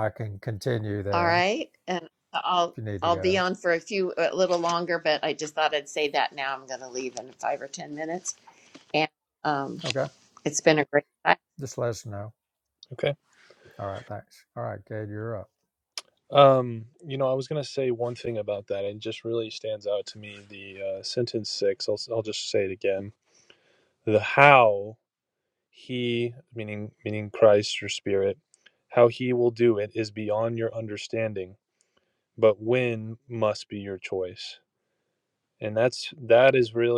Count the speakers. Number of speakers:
3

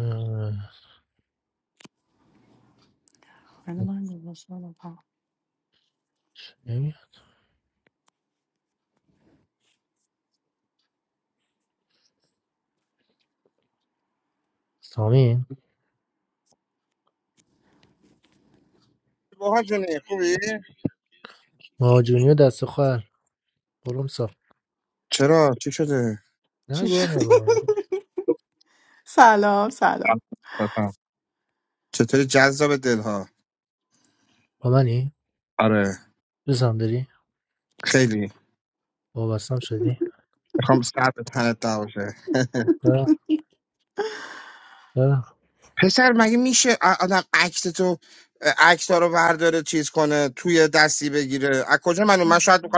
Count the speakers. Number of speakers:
3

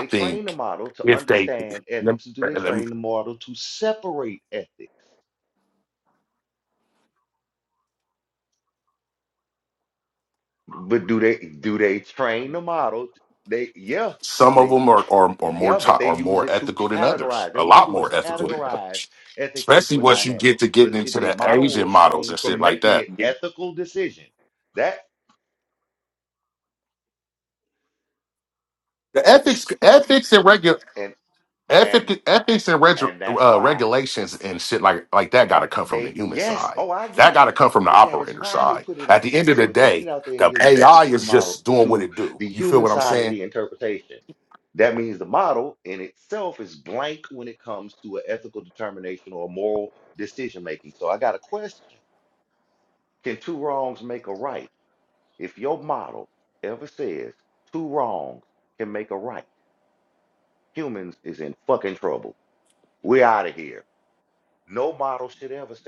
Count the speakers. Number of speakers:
2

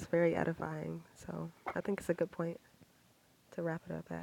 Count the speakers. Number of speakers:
1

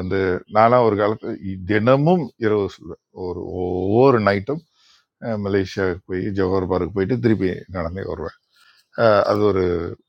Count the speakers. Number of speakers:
1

